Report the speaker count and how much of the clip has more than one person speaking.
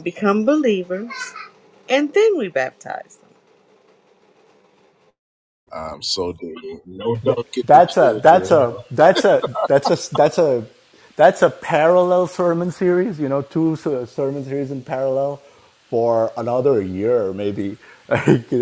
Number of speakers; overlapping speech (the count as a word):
three, about 5%